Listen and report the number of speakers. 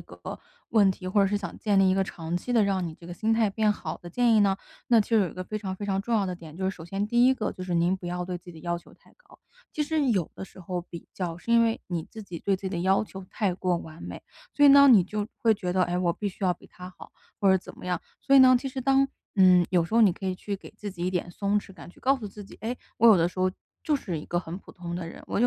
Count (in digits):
1